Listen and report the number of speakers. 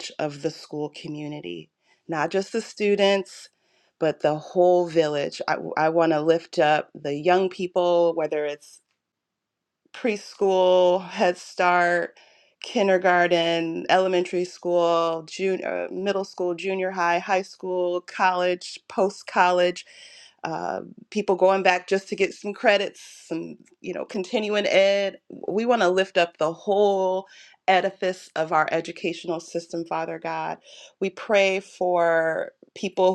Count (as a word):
one